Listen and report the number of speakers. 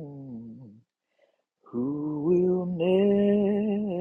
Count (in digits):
1